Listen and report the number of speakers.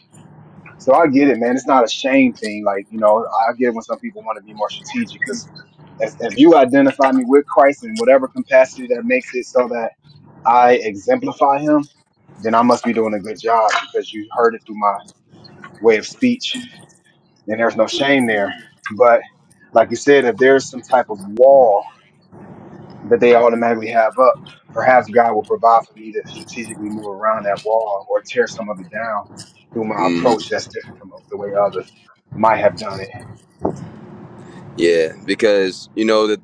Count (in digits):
2